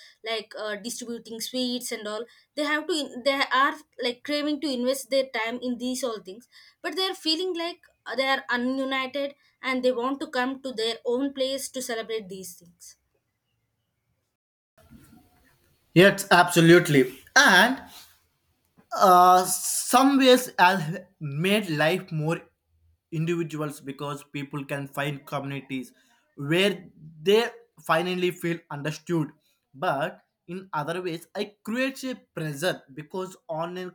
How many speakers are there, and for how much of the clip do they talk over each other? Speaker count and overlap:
2, no overlap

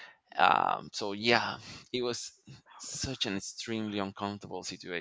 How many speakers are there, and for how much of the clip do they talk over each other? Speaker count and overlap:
1, no overlap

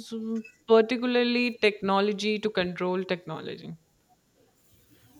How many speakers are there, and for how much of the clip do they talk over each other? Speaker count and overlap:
1, no overlap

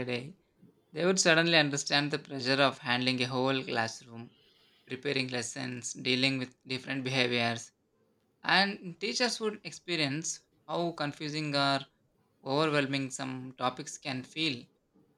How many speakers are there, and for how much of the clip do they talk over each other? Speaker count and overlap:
1, no overlap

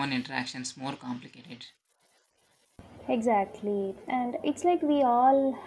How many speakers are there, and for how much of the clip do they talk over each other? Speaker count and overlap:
2, no overlap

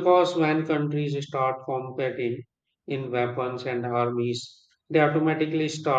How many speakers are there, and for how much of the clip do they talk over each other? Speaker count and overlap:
1, no overlap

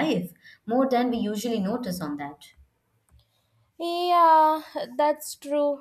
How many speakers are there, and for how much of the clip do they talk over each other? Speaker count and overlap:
2, no overlap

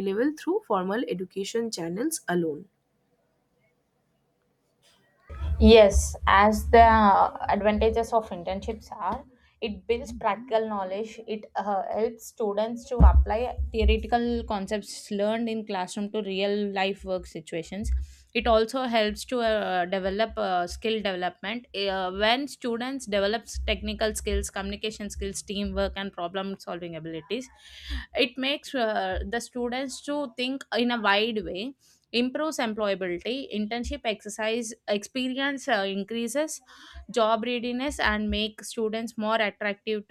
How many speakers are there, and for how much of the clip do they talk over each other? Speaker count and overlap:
2, no overlap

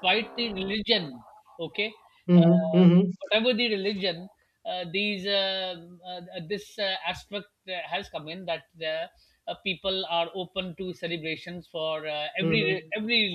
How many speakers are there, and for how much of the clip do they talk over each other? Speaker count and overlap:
2, about 7%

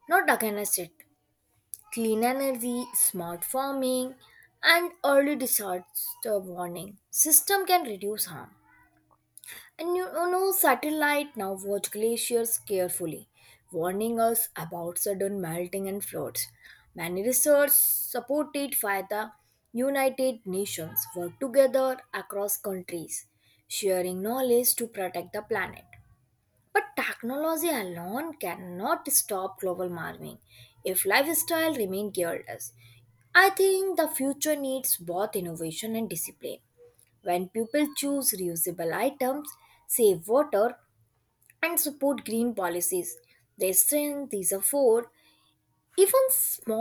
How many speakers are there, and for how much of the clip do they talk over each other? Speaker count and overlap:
1, no overlap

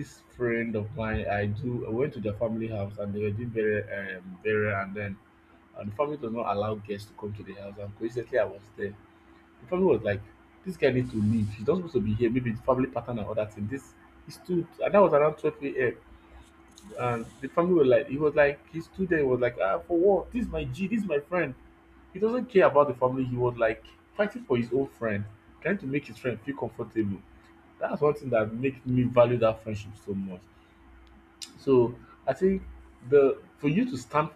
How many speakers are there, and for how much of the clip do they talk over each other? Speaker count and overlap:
1, no overlap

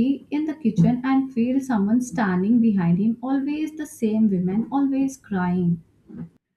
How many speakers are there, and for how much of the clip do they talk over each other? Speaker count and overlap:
1, no overlap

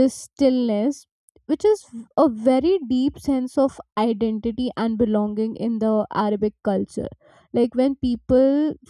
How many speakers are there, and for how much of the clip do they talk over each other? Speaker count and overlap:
1, no overlap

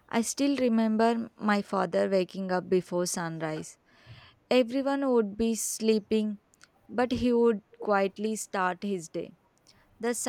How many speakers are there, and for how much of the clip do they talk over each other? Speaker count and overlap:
1, no overlap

